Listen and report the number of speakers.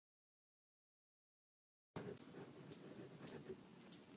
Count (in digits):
0